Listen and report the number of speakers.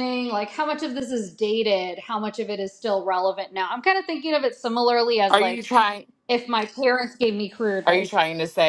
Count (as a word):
two